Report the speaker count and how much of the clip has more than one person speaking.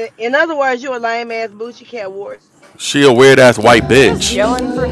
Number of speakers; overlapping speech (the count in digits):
3, about 9%